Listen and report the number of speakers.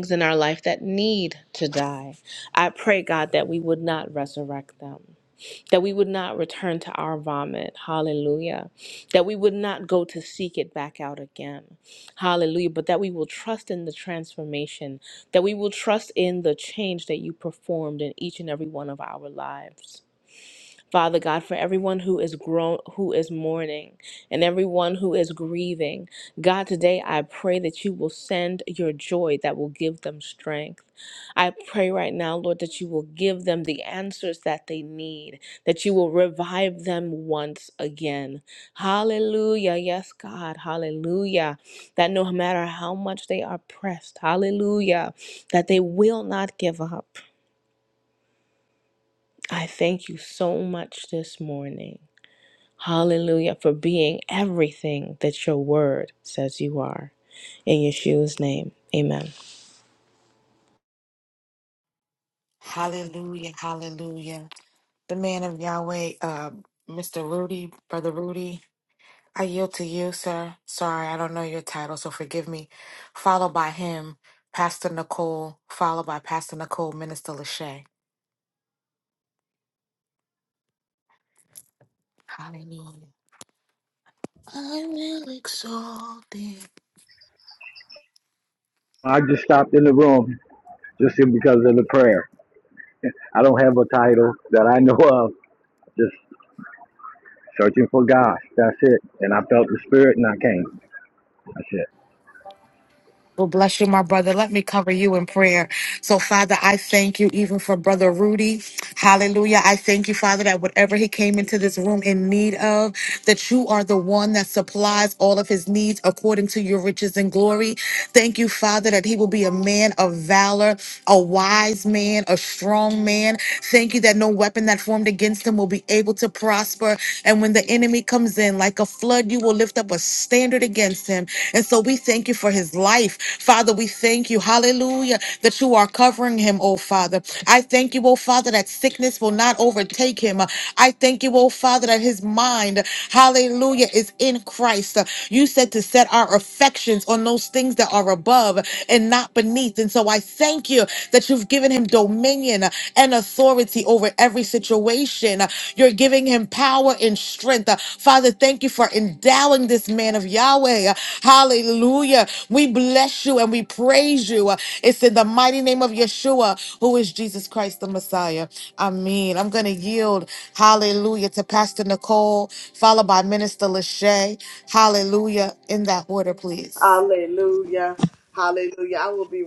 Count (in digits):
4